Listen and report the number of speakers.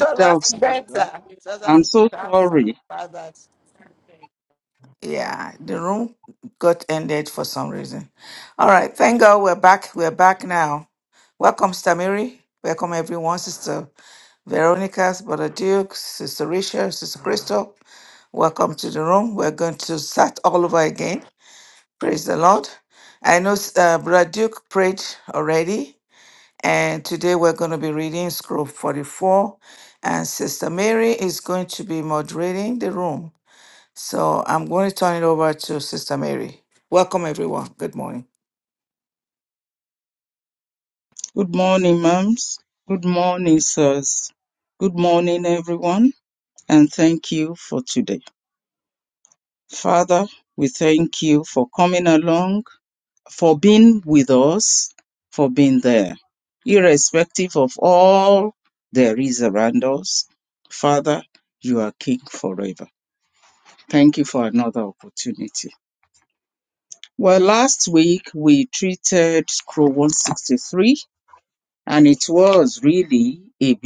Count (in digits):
3